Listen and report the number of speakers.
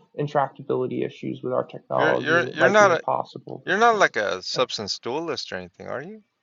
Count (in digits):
2